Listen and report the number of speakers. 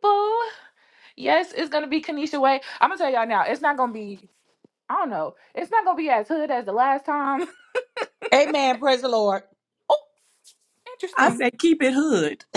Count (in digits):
3